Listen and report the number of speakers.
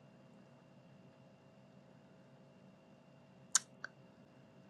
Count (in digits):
0